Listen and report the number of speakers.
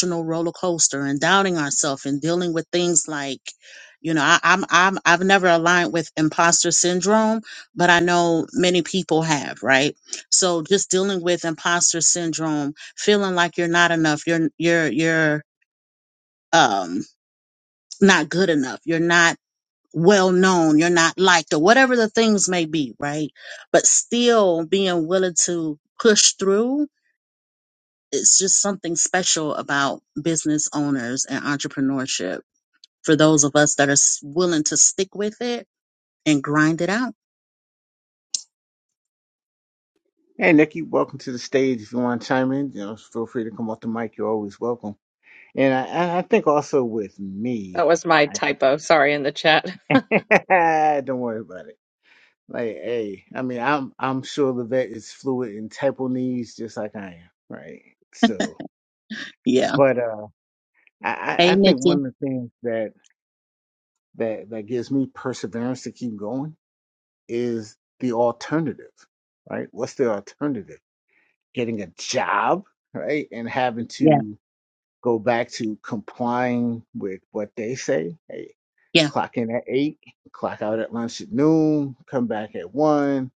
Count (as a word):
three